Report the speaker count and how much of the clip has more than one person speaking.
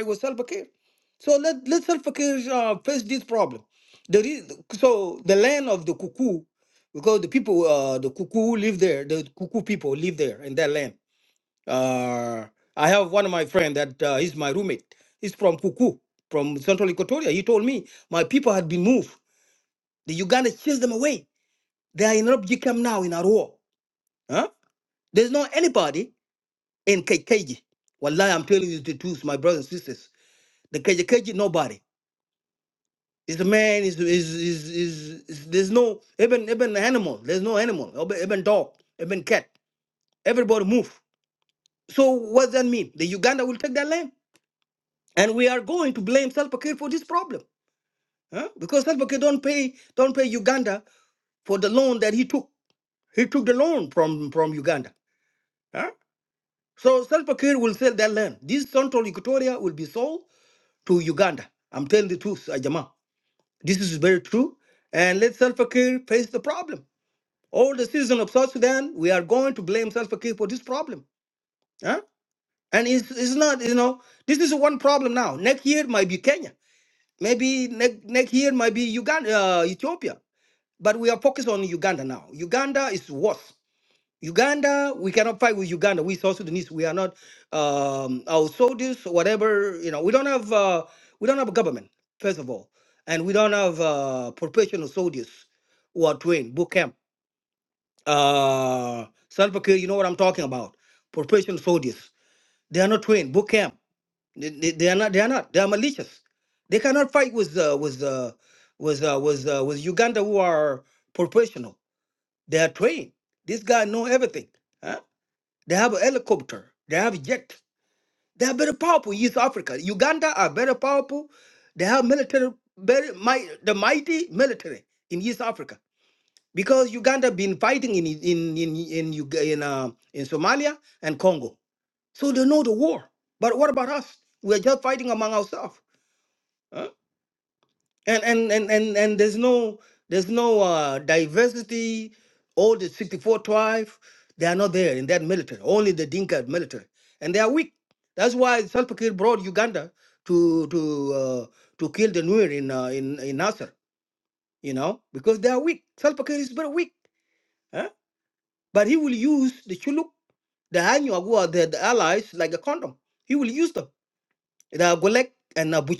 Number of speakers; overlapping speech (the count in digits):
1, no overlap